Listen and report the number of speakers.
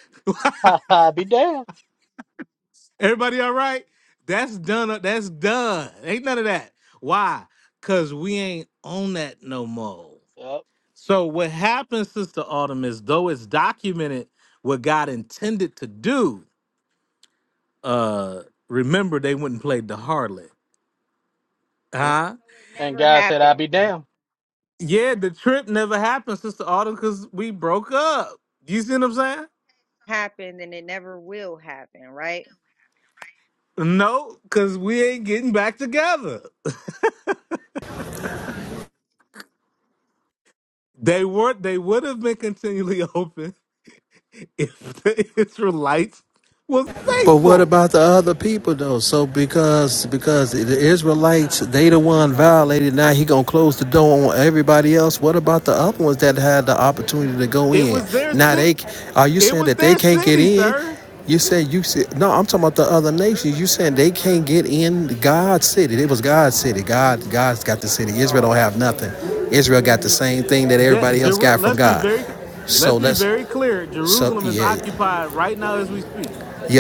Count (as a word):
four